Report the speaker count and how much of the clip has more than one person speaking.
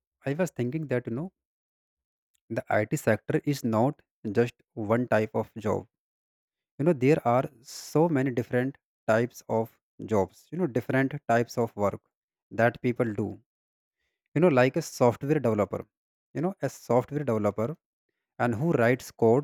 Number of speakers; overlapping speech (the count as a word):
one, no overlap